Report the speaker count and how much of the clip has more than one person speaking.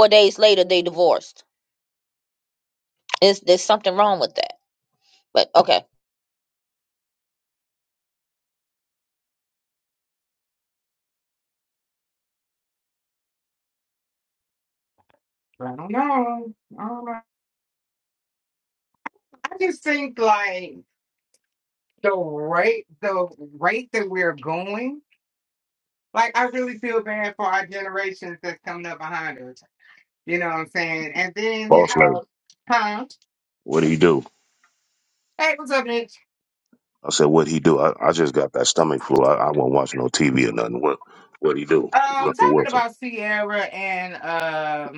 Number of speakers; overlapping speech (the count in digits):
3, about 3%